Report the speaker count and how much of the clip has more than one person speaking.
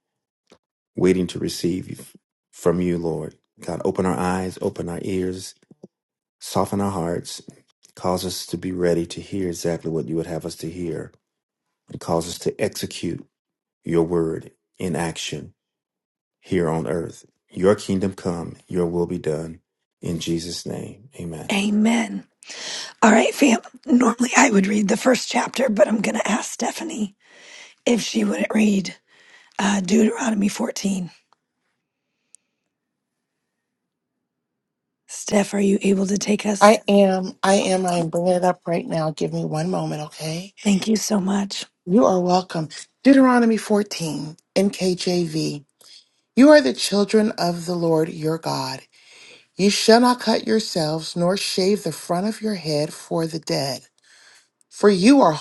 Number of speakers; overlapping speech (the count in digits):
3, under 1%